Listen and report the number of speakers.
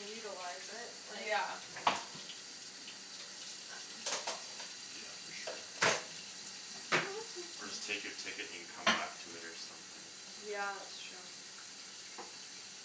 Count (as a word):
three